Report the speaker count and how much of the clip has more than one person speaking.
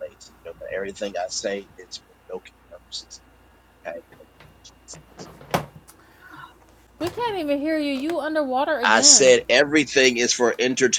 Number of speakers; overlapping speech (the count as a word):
two, about 4%